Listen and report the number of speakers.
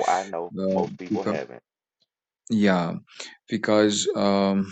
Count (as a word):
two